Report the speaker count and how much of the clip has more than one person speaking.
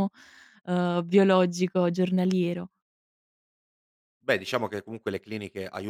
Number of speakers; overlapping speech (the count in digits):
2, no overlap